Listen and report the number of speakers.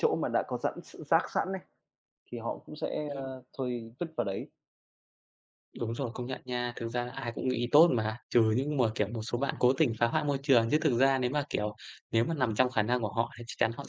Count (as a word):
two